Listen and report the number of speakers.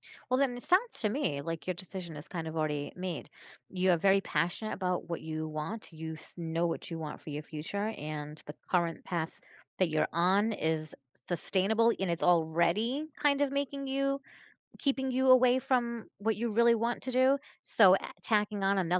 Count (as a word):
one